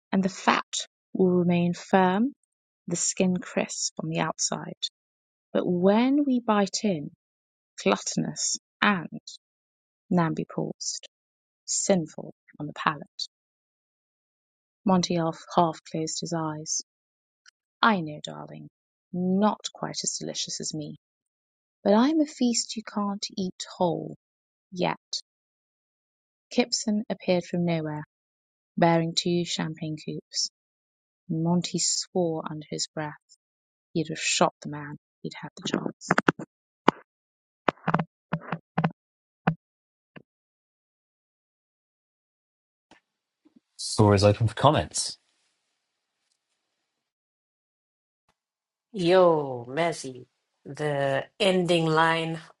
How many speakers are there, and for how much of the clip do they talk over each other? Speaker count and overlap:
3, no overlap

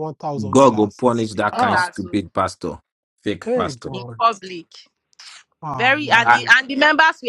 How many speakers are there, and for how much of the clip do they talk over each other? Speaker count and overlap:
3, about 35%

